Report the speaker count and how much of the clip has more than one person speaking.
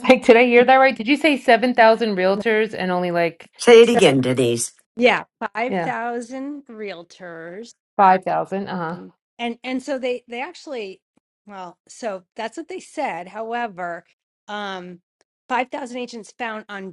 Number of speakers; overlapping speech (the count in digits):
3, about 3%